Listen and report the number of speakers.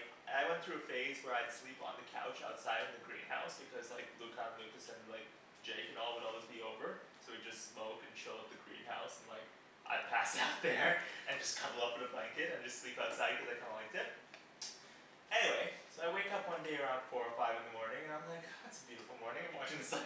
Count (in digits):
1